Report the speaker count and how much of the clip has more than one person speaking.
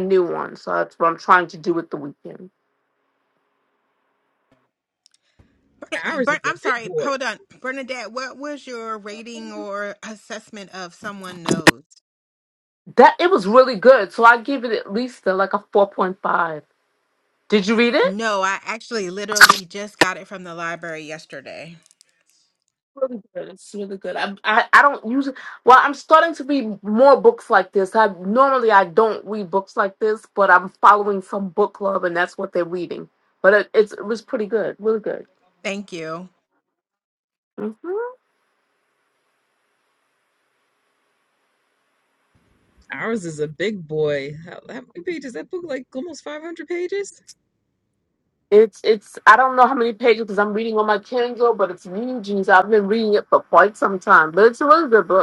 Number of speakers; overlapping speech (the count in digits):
3, about 2%